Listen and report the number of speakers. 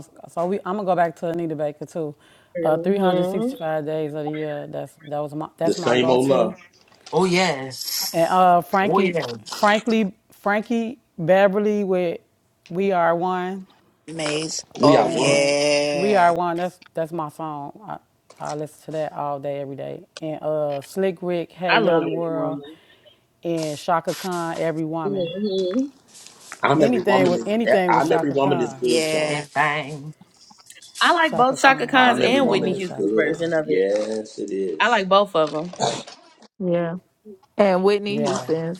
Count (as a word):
six